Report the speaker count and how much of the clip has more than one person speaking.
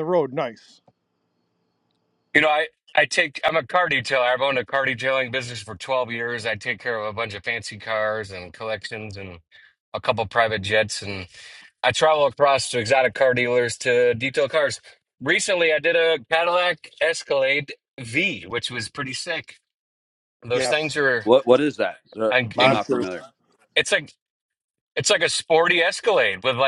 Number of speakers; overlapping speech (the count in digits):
3, about 4%